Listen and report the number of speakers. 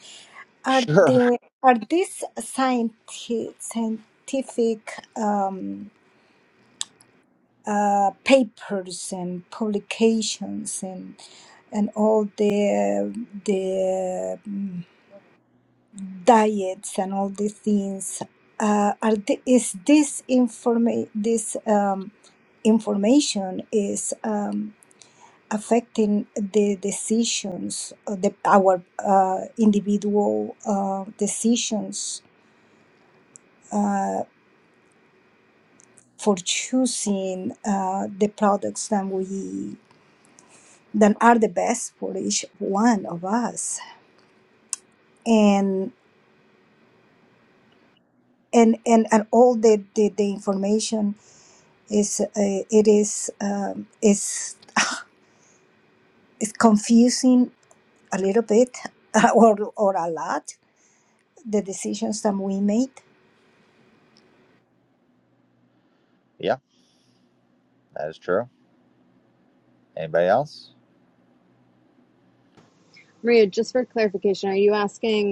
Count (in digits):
3